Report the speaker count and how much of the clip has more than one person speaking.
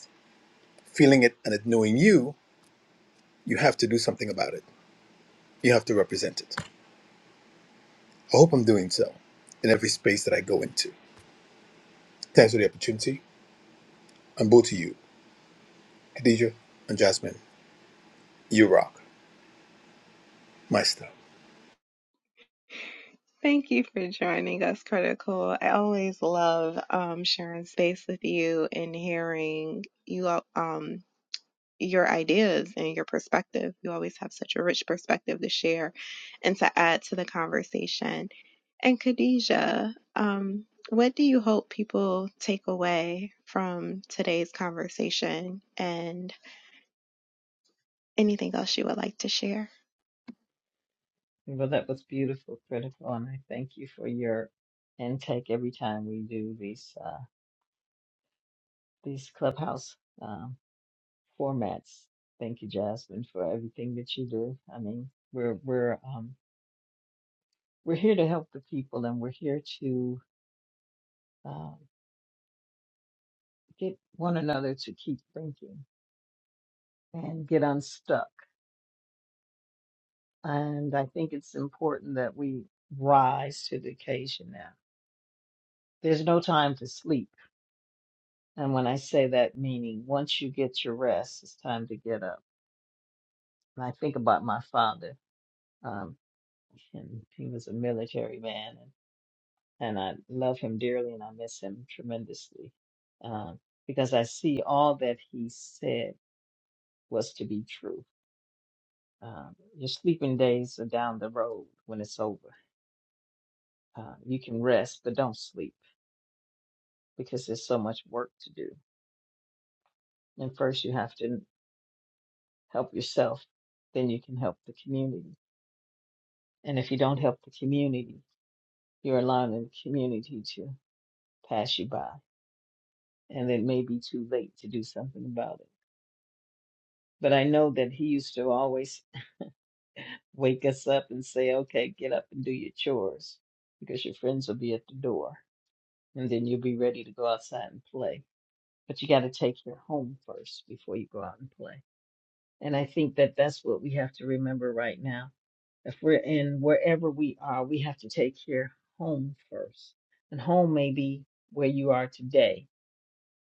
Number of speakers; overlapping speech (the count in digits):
3, no overlap